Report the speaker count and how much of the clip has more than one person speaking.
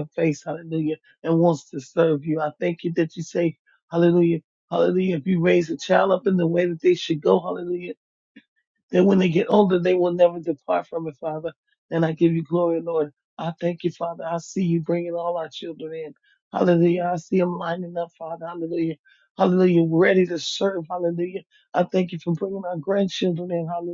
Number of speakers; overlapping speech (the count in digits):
1, no overlap